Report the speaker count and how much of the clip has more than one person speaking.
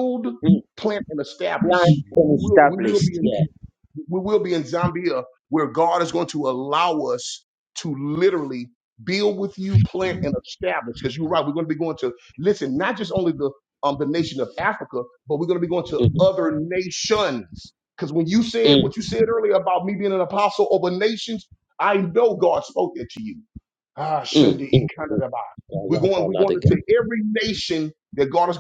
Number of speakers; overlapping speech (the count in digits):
2, about 13%